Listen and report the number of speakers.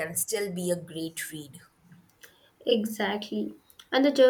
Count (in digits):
2